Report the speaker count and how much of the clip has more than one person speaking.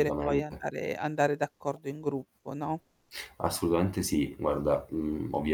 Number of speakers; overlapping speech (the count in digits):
2, about 11%